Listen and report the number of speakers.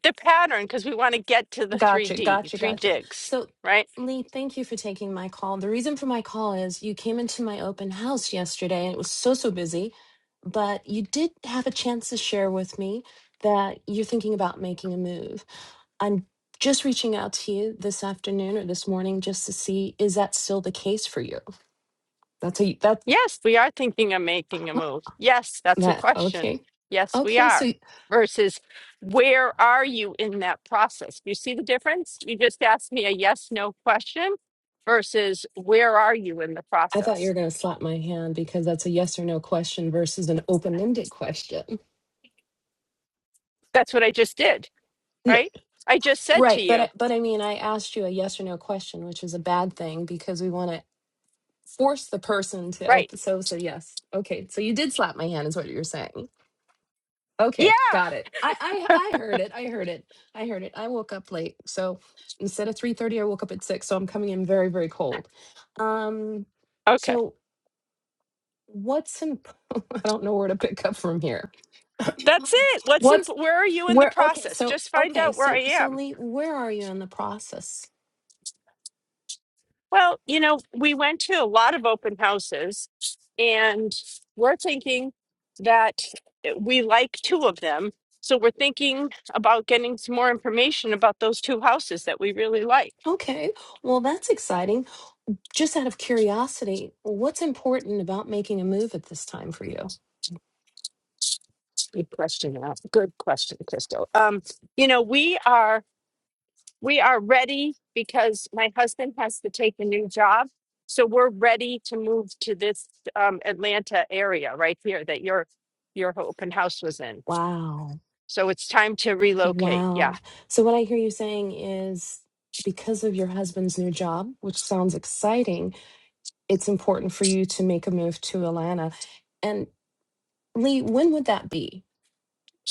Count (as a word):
two